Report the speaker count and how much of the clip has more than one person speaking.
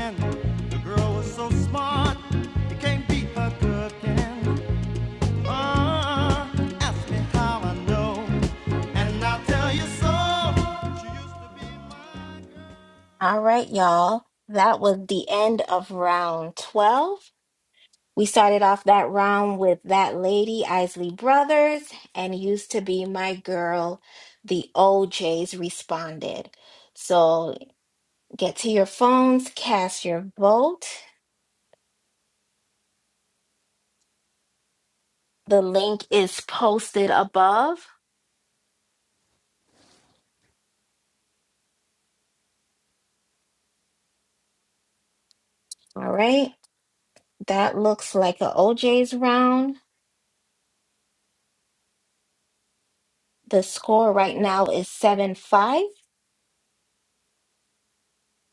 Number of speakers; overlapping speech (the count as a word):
two, no overlap